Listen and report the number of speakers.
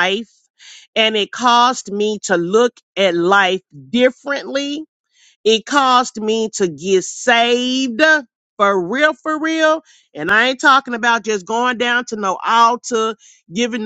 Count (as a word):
one